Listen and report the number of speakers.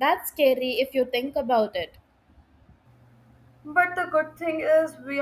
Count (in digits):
2